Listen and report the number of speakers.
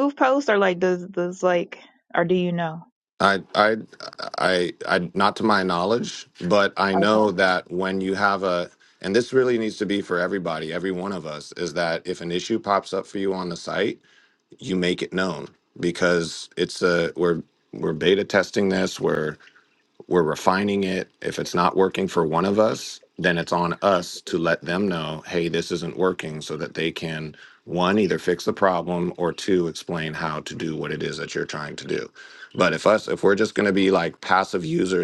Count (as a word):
two